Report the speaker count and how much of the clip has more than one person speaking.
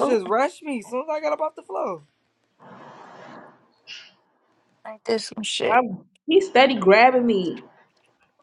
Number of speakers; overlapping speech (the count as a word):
three, about 5%